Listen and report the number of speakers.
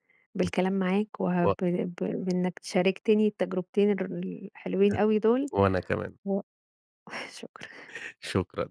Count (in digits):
2